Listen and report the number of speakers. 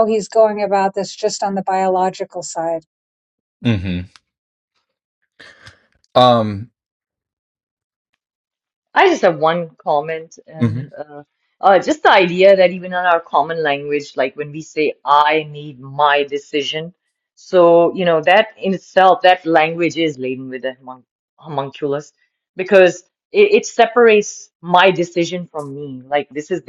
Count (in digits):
3